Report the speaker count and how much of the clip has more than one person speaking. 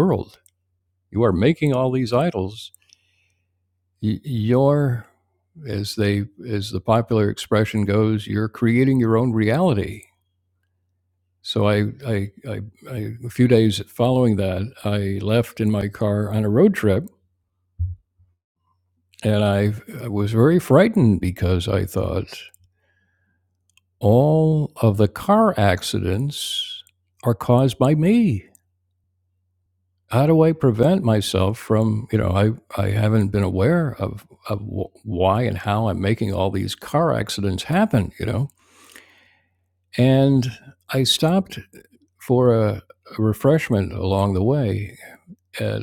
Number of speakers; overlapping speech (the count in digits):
1, no overlap